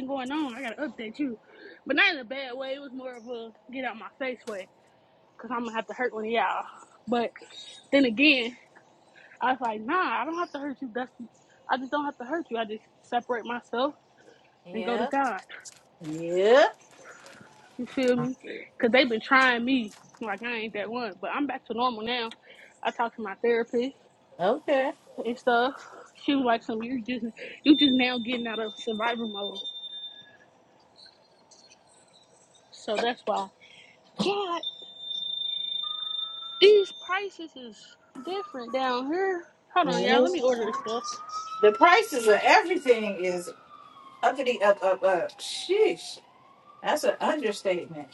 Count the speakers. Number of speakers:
2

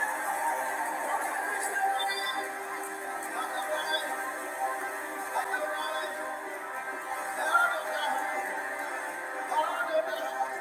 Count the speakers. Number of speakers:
0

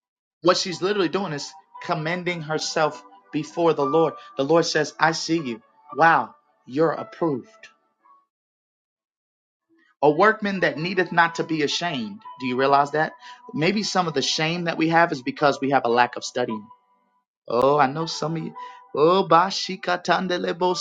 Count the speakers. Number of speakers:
1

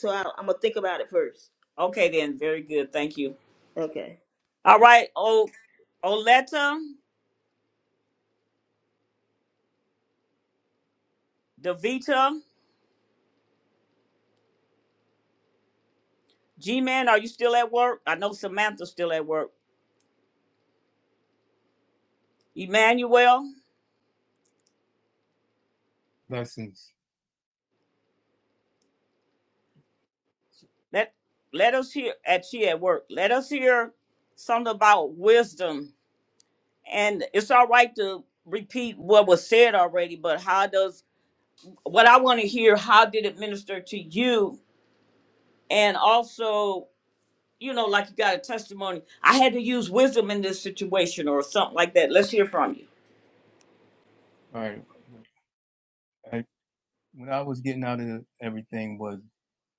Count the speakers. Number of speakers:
3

